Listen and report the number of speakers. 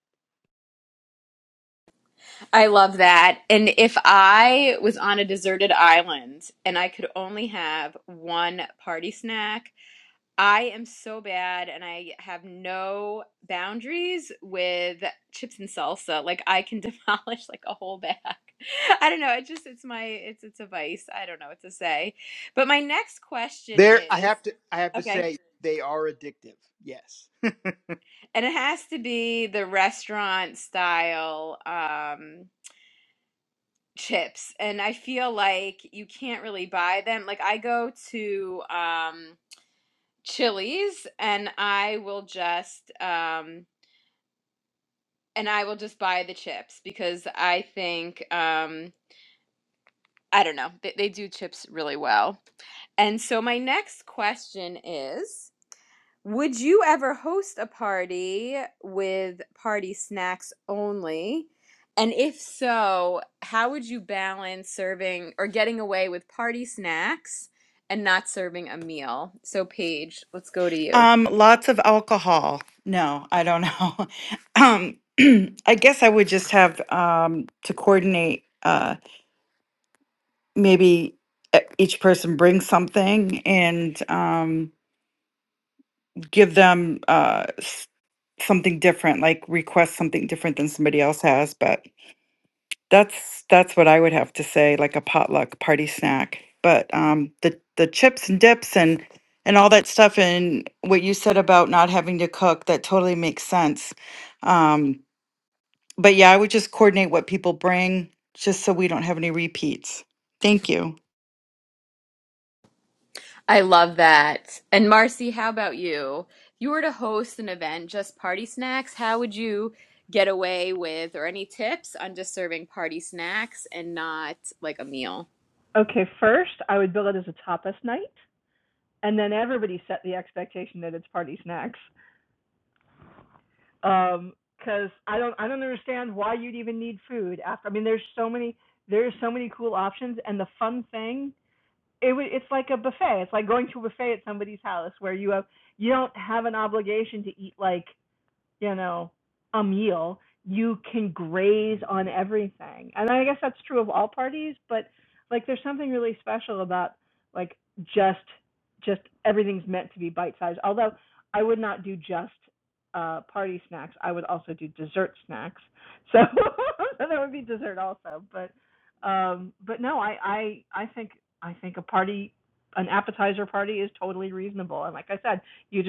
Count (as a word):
four